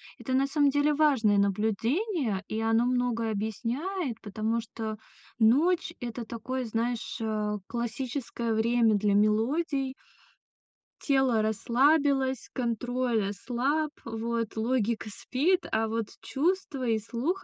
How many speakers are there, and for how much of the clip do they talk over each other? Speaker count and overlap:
1, no overlap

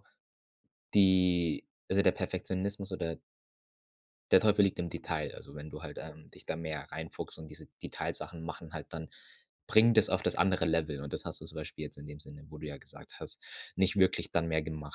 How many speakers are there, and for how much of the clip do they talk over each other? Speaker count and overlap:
1, no overlap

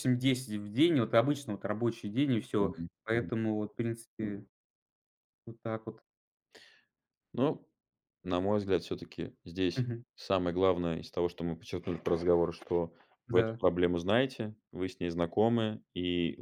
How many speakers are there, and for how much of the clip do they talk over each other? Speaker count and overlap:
2, about 6%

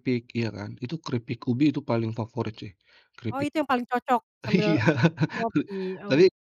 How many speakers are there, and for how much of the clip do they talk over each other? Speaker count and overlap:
2, about 10%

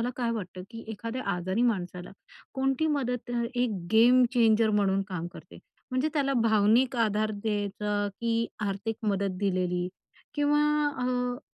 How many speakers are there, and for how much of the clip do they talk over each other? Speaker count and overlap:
1, no overlap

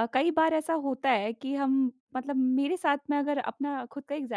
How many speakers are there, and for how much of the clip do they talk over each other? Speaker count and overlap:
1, no overlap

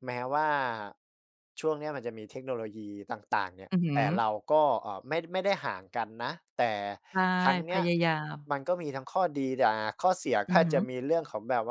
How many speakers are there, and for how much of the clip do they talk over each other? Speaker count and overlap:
2, about 6%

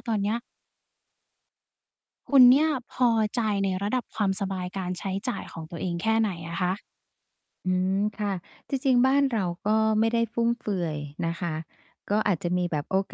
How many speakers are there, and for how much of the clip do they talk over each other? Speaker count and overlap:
2, no overlap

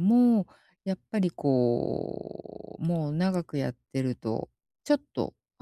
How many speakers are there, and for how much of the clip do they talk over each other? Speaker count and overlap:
1, no overlap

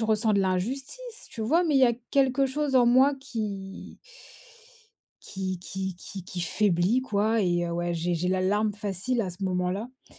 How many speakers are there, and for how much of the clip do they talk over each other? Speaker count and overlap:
1, no overlap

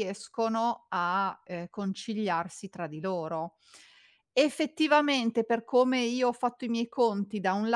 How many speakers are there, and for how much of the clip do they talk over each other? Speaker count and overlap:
1, no overlap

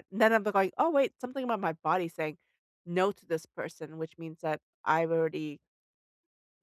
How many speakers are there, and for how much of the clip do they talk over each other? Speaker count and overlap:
1, no overlap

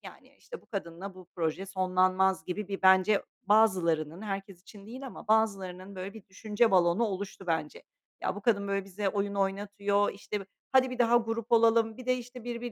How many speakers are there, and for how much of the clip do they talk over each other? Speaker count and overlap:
1, no overlap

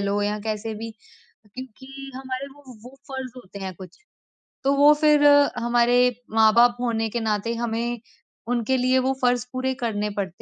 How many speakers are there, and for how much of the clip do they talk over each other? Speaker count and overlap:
1, no overlap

